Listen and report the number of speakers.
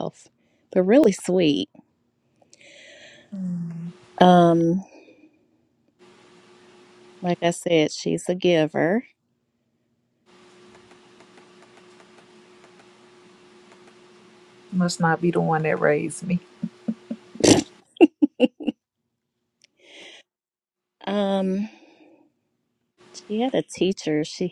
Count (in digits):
2